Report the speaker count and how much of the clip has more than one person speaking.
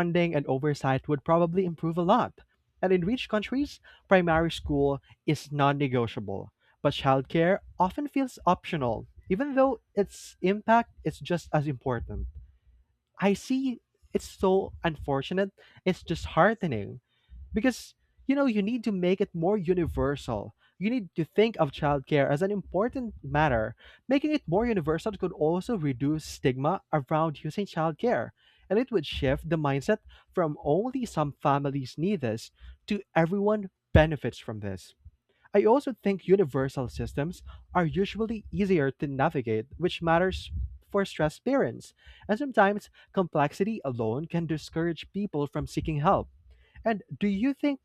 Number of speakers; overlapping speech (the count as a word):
one, no overlap